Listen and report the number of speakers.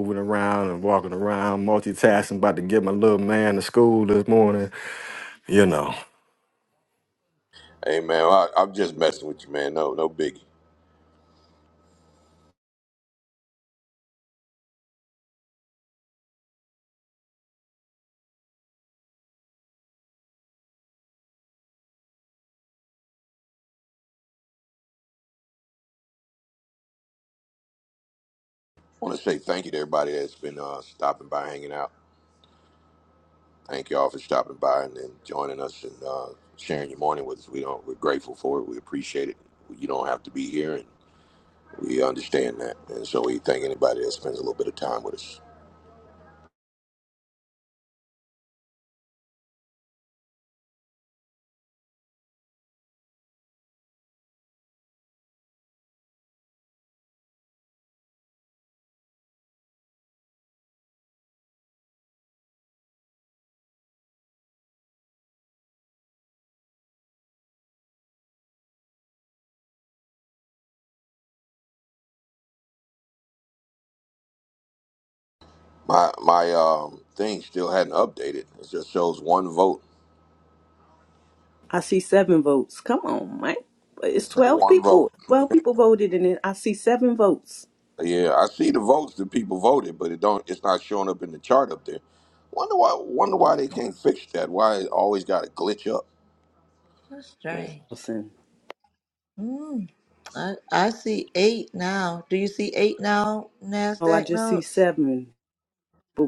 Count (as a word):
four